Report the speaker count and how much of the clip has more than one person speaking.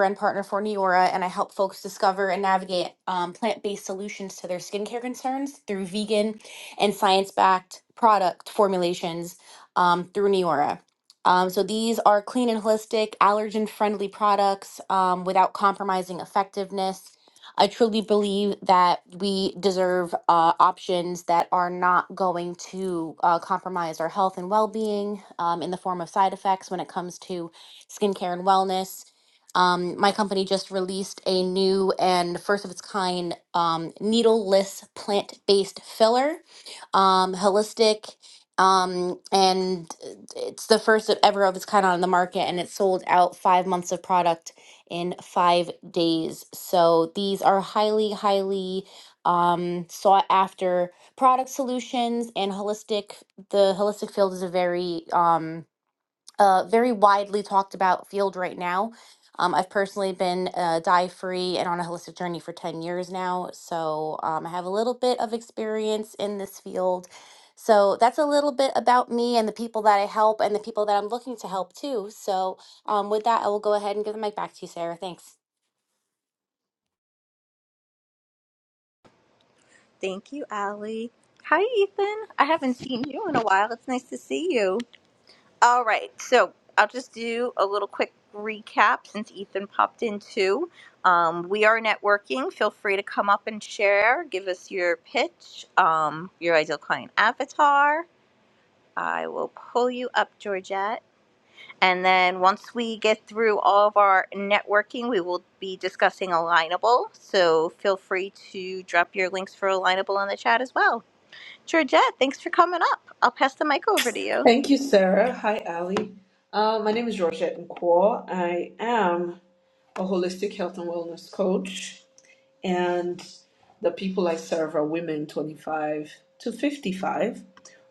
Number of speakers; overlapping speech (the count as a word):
three, under 1%